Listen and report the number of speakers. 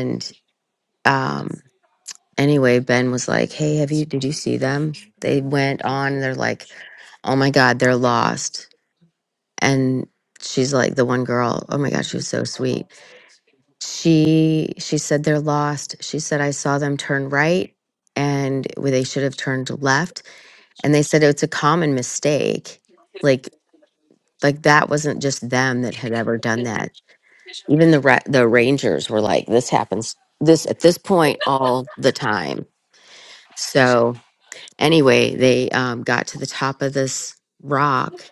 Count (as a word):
one